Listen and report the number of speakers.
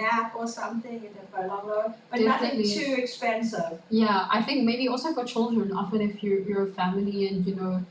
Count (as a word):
two